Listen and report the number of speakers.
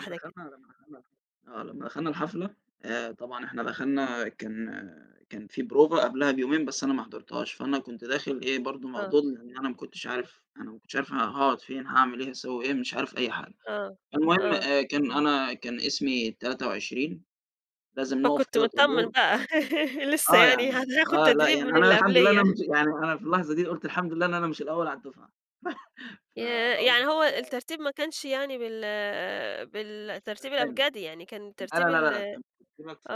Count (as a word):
two